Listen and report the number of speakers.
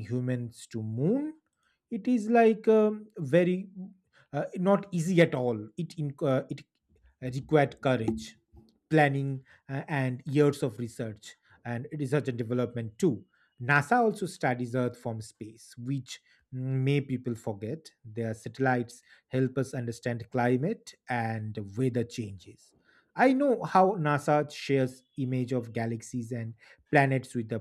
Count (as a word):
one